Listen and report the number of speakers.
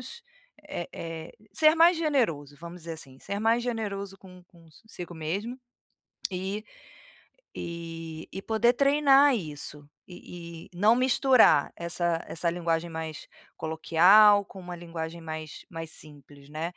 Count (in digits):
1